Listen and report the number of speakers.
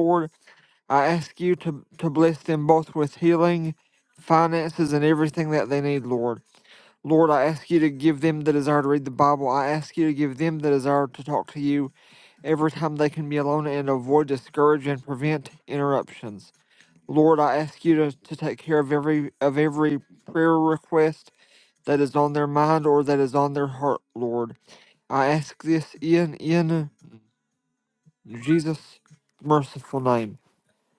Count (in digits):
1